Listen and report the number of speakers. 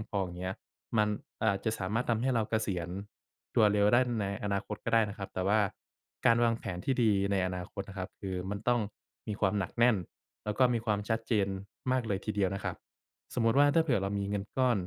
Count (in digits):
1